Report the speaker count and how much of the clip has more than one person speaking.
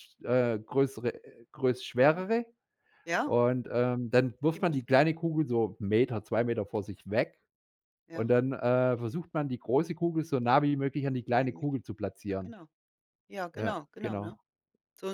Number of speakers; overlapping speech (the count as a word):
two, about 9%